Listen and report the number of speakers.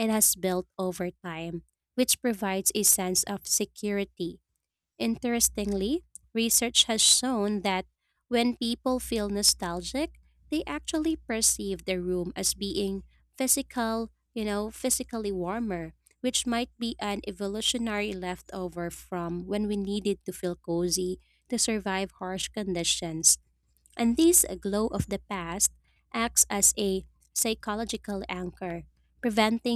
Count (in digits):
1